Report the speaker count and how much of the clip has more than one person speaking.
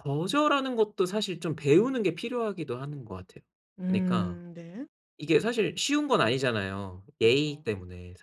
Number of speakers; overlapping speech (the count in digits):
2, about 9%